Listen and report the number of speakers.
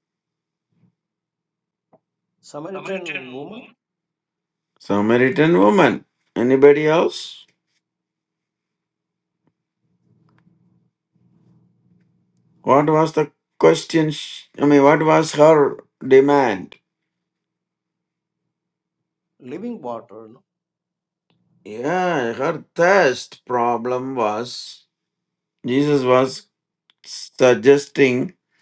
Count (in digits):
2